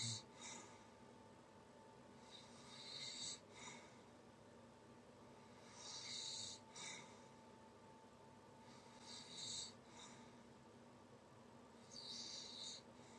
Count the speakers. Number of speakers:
0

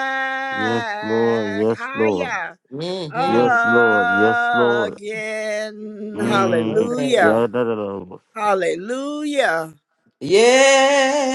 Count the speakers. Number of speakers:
3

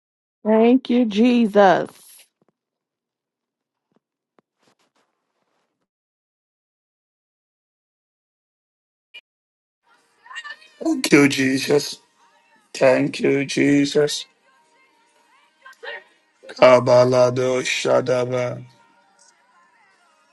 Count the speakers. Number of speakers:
2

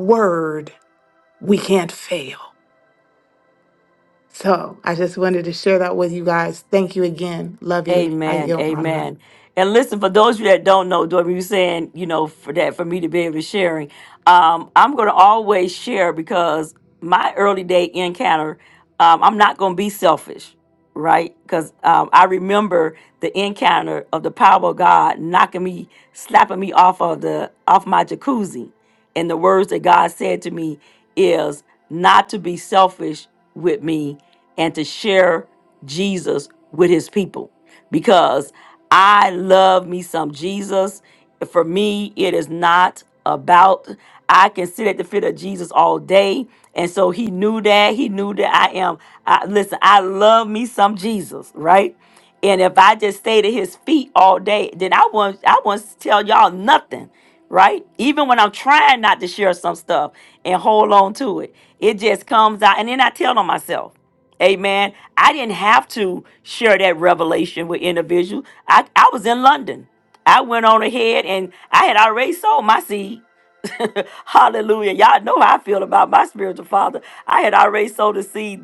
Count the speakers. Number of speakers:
2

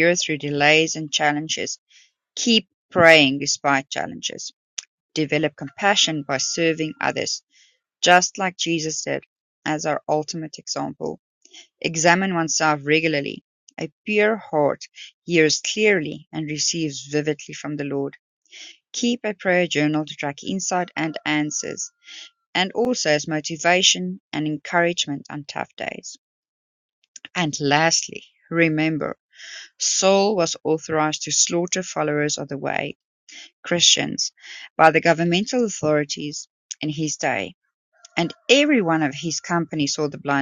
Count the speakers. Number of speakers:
1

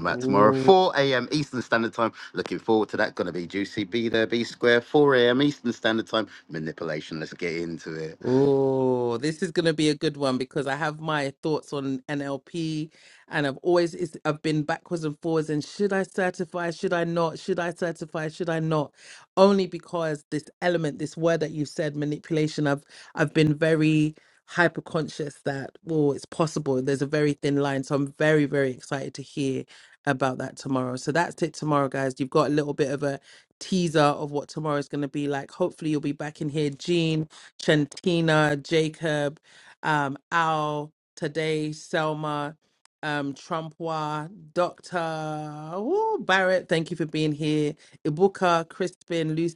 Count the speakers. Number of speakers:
2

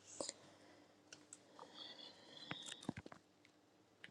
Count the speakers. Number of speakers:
0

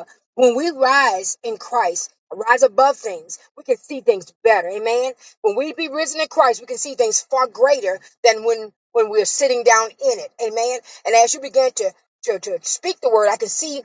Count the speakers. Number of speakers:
1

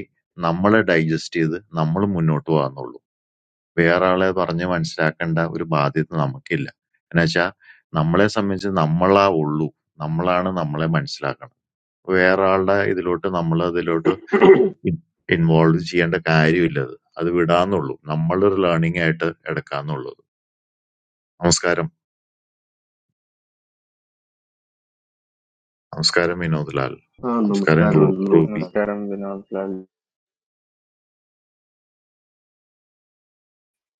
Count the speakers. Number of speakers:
3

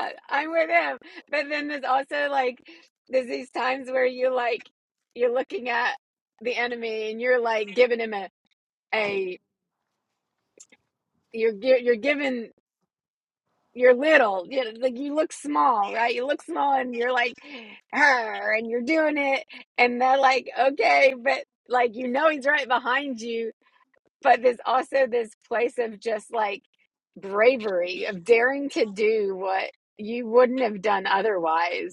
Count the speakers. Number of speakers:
1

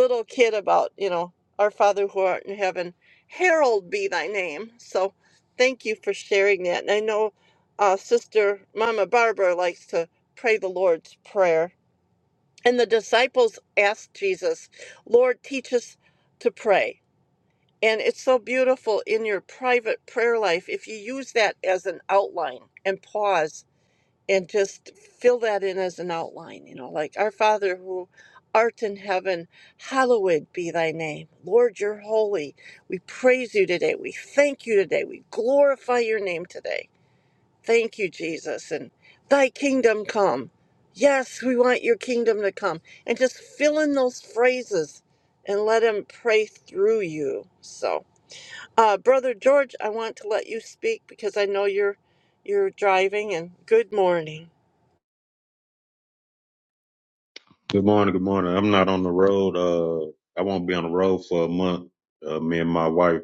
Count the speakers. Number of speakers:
2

